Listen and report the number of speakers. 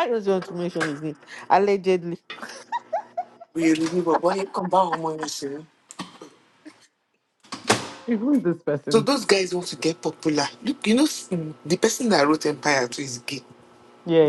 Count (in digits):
3